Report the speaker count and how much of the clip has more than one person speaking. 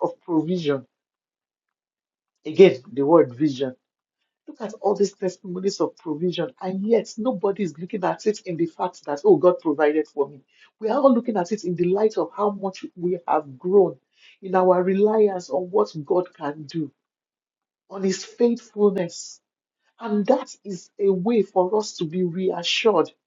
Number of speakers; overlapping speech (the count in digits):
1, no overlap